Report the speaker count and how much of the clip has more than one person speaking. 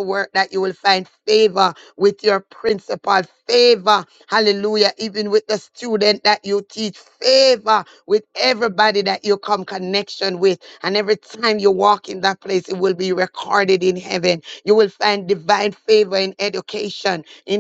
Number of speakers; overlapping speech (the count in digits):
1, no overlap